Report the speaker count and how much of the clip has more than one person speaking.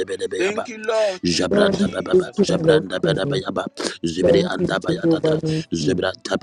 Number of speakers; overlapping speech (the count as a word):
three, about 51%